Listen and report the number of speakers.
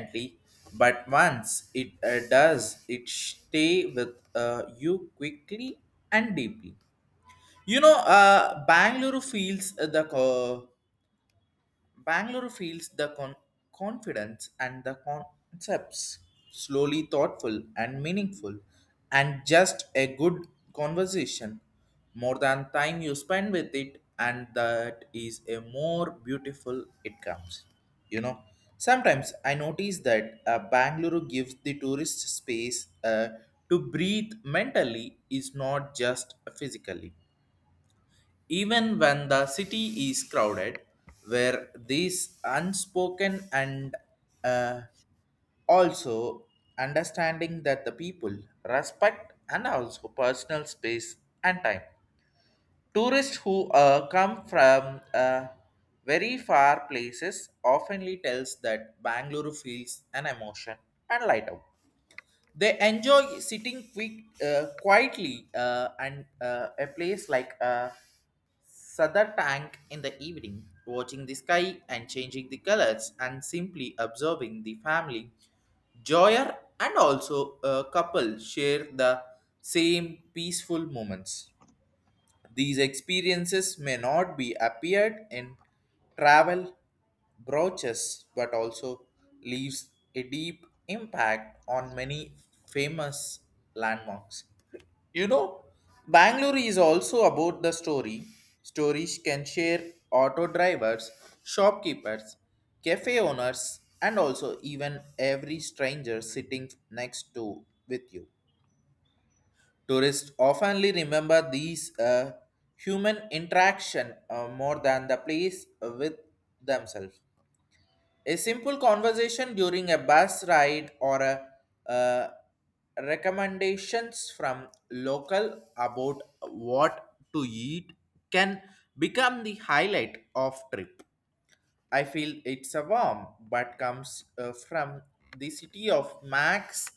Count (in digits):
1